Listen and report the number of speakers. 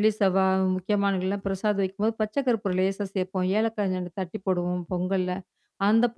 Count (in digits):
1